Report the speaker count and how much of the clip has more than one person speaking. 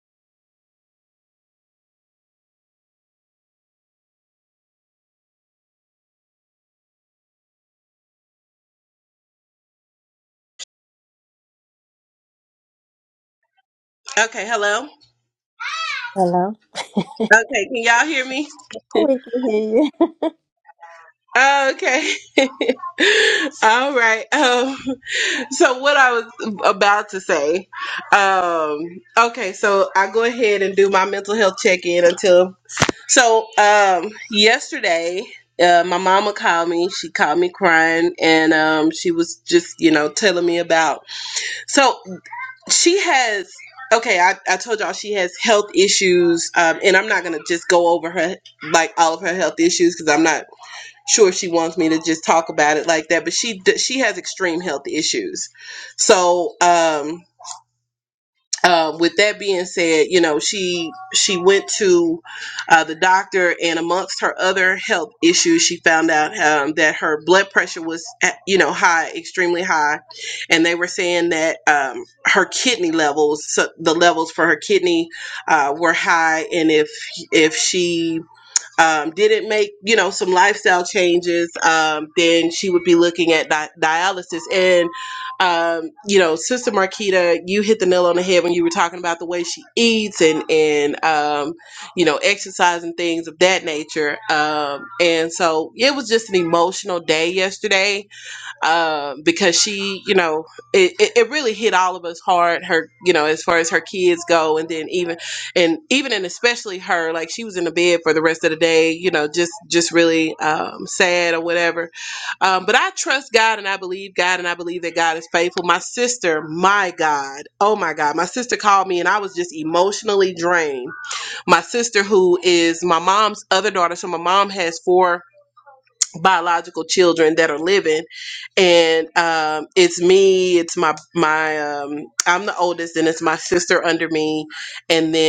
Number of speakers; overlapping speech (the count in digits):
2, no overlap